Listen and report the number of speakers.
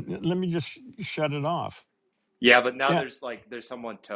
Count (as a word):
two